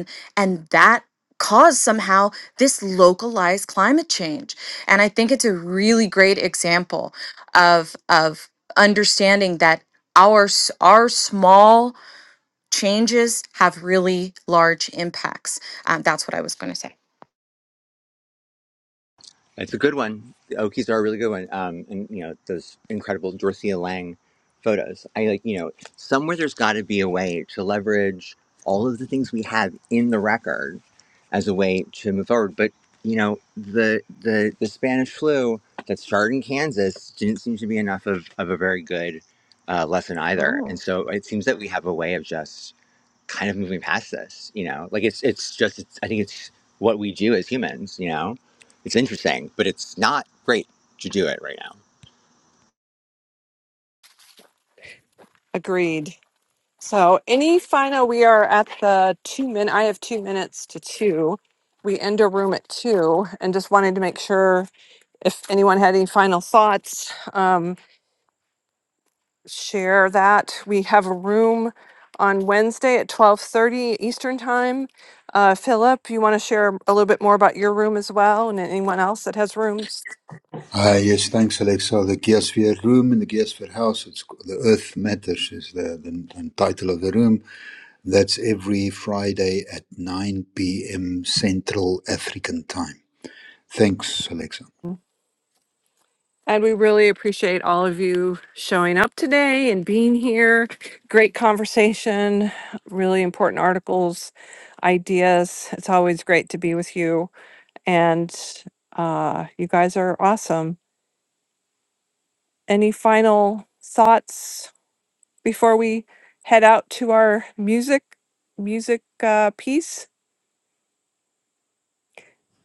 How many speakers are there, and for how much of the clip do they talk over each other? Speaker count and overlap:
4, under 1%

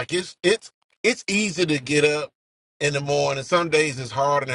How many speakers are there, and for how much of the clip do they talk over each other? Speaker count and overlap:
1, no overlap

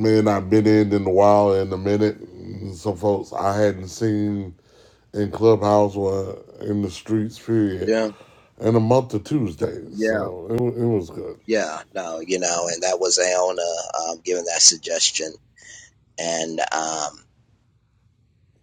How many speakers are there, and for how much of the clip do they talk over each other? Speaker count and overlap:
2, about 2%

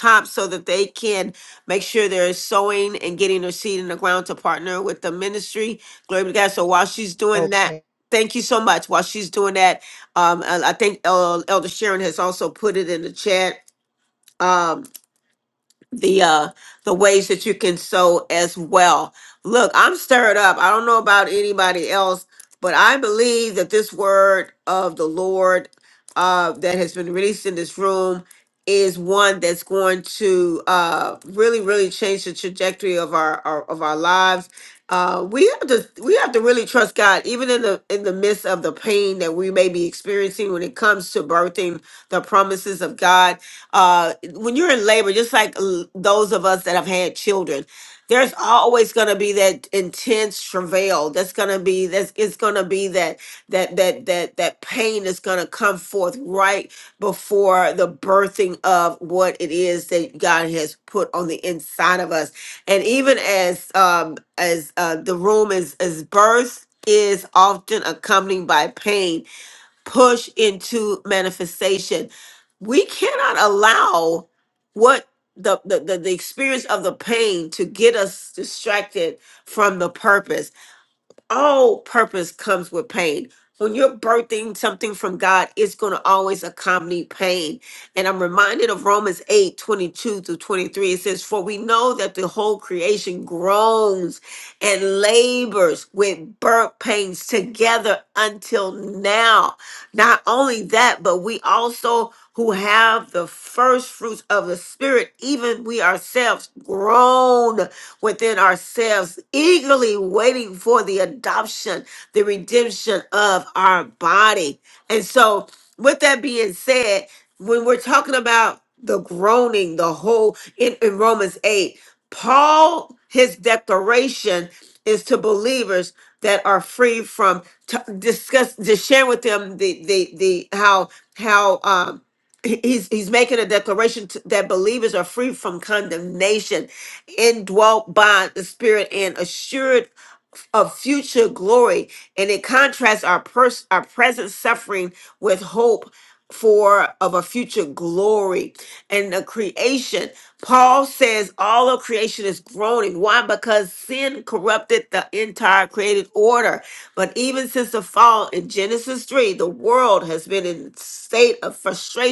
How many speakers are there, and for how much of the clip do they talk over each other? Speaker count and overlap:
1, no overlap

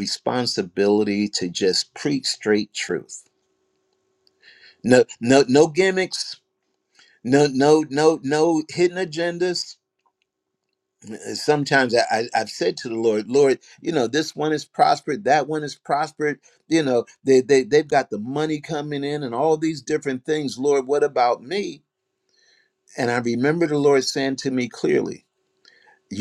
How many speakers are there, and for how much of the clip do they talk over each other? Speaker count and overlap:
1, no overlap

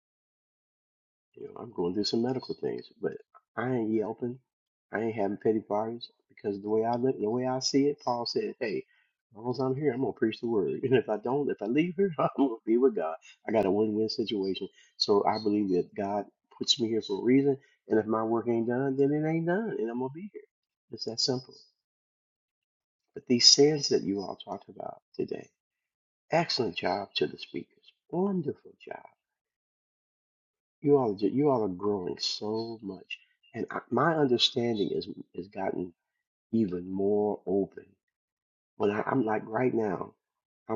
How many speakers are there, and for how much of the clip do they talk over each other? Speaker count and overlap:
1, no overlap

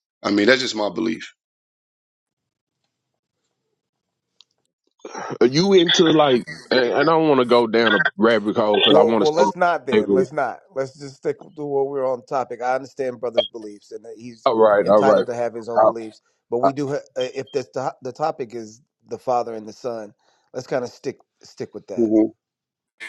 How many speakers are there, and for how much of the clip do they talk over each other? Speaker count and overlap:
3, about 7%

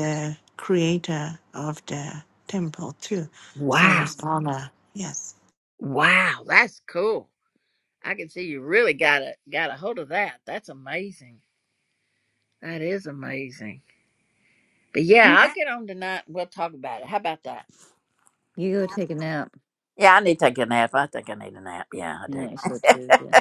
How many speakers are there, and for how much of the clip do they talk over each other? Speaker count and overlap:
3, about 3%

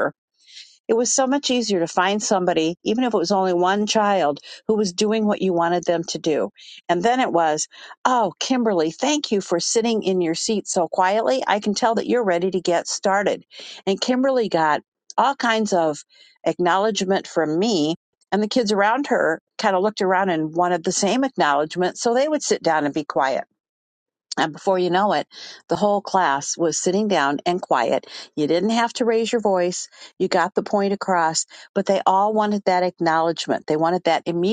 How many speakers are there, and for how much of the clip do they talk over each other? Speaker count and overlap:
1, no overlap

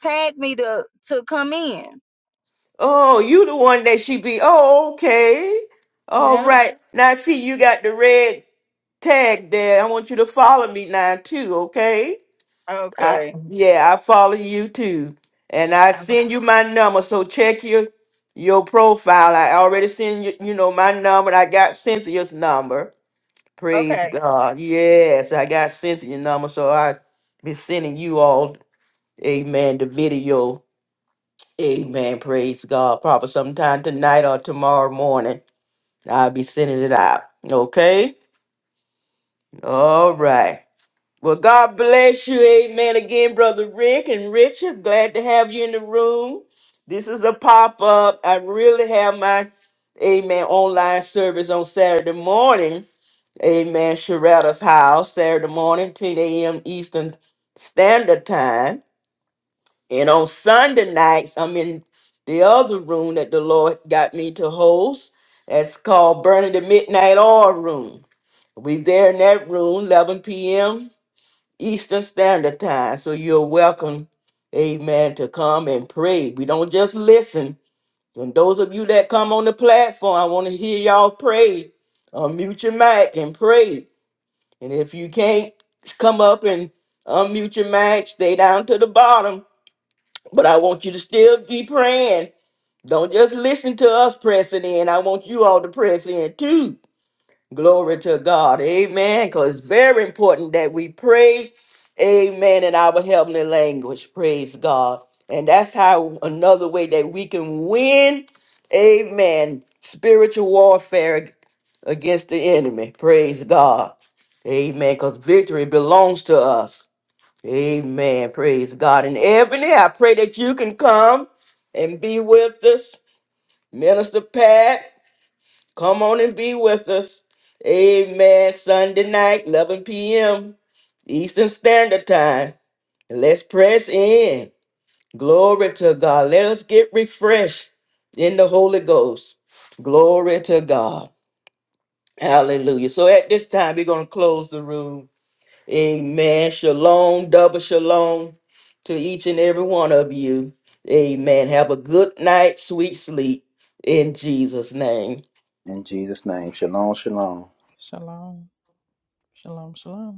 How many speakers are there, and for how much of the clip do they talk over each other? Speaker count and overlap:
4, about 1%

